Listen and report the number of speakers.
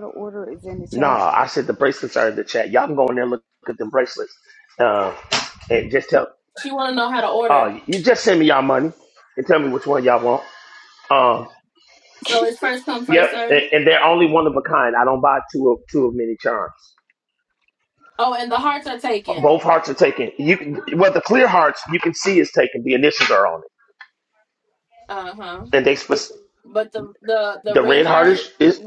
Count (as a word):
three